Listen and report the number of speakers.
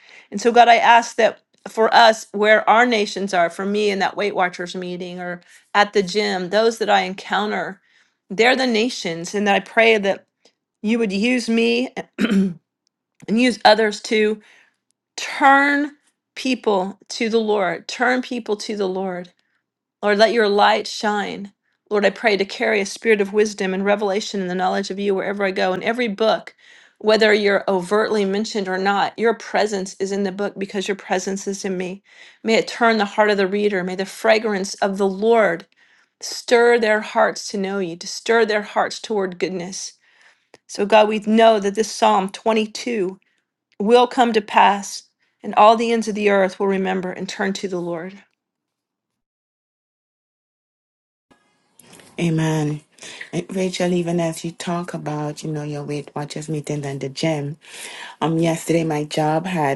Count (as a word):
two